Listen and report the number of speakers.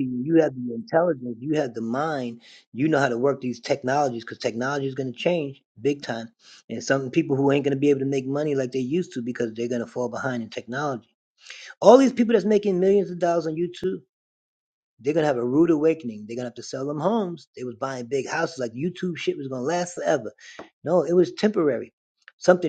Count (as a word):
one